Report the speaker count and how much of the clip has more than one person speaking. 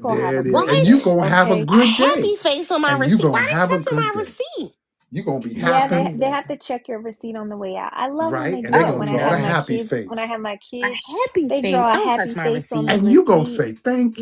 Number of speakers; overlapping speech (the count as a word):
three, about 62%